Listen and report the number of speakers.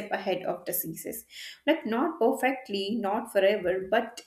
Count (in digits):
1